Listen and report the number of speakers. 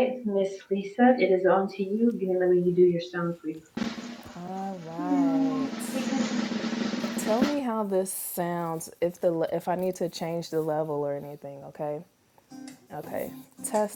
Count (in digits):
2